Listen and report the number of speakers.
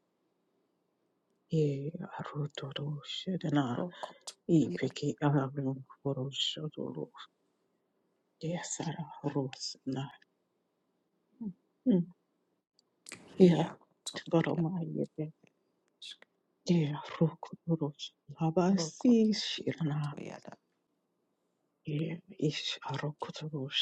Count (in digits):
2